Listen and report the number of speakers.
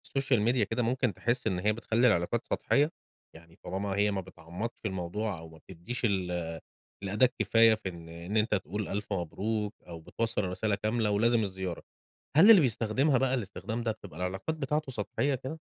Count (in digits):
1